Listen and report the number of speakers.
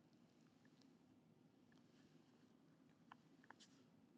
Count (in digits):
0